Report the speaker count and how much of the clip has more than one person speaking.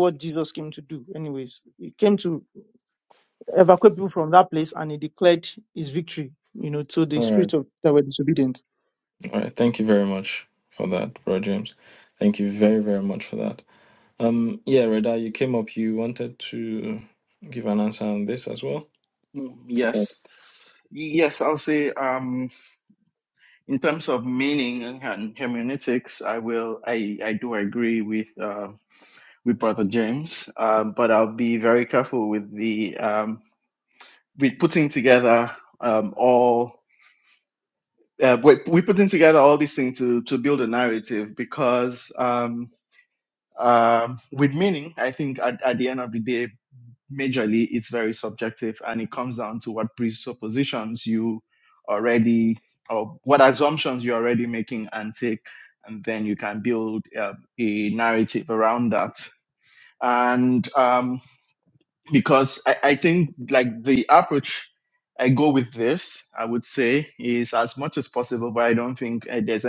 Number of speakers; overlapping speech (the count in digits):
3, under 1%